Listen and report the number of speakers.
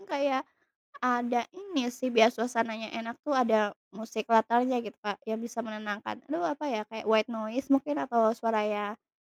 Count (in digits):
1